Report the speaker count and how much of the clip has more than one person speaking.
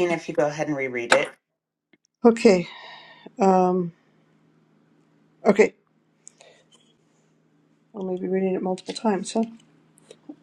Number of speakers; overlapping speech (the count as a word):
two, no overlap